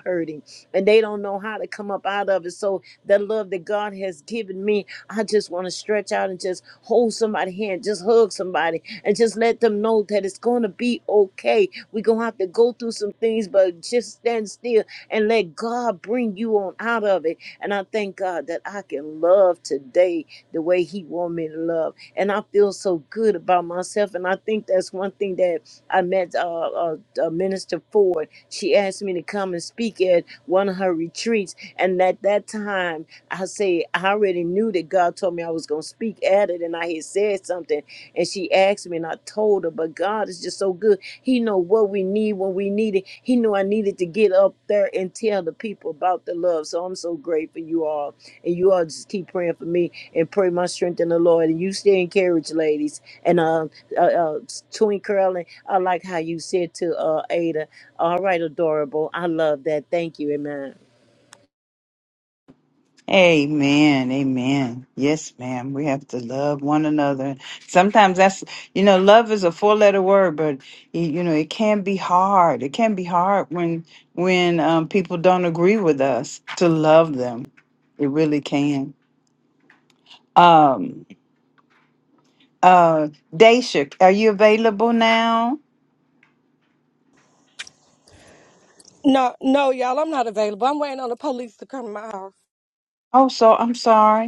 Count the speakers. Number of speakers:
3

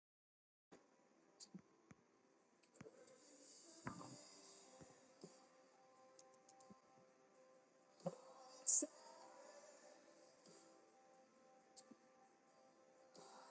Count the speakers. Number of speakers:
0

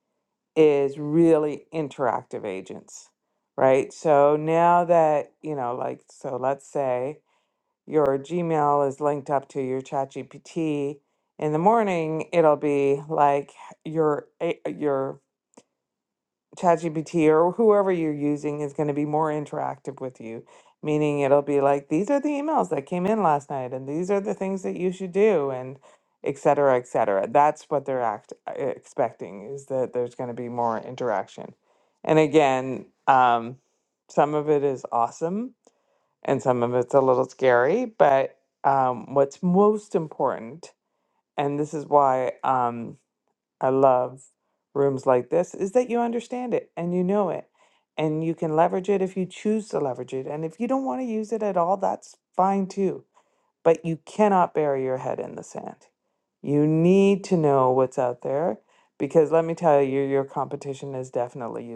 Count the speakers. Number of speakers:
1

